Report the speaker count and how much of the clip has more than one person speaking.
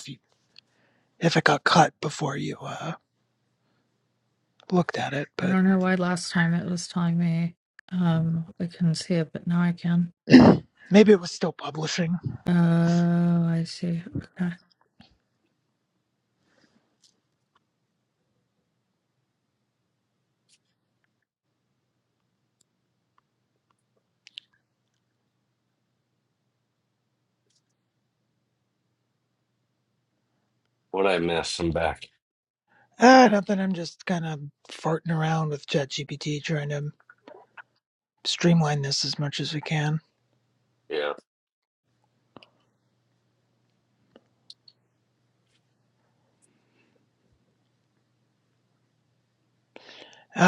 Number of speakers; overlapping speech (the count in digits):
3, under 1%